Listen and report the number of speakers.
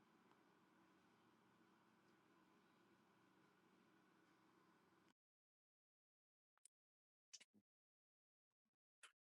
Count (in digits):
0